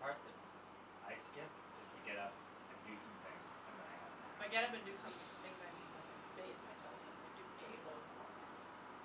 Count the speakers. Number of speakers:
two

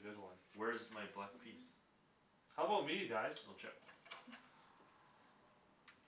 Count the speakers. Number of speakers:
two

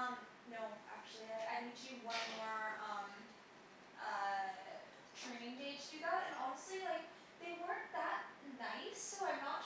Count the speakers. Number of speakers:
one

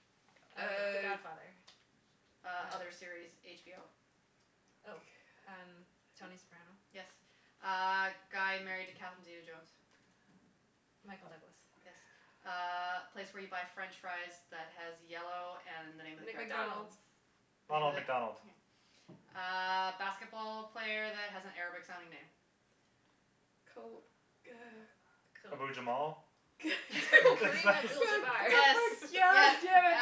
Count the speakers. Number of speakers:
four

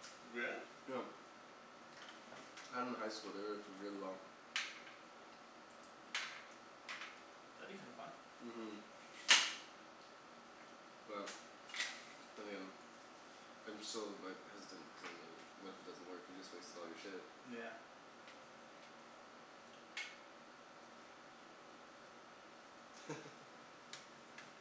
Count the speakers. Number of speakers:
two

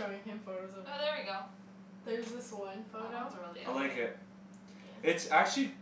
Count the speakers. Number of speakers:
three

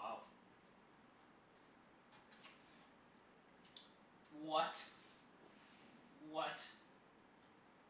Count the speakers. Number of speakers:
one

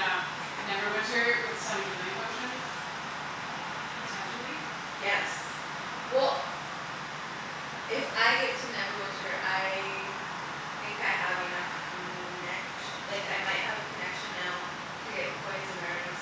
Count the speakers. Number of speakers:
two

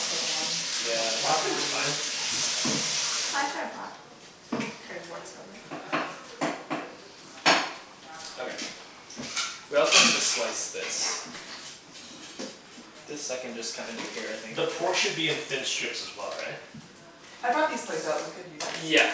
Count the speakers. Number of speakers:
four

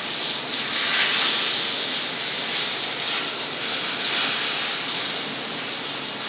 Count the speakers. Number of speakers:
zero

